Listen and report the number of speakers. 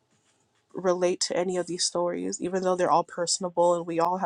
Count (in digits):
1